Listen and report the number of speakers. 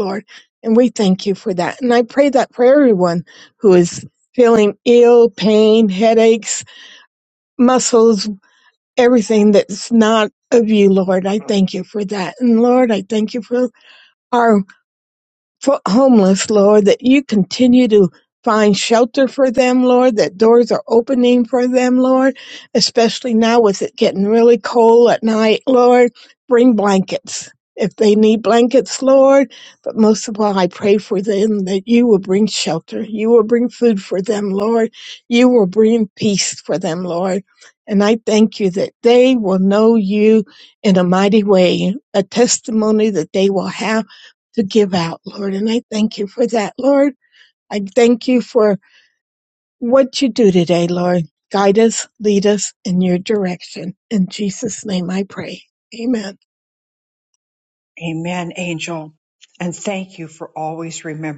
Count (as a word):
two